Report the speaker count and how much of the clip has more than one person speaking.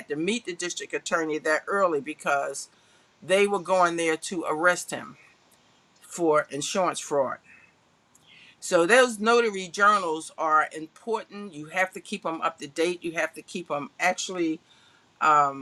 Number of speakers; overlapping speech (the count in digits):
1, no overlap